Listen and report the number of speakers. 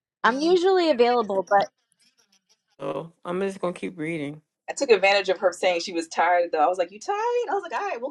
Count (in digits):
3